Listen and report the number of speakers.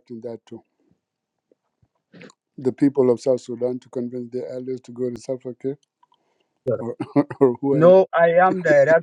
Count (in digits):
2